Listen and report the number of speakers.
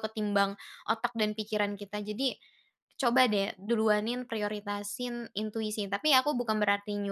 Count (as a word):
one